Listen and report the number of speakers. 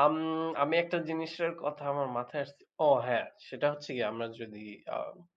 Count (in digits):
1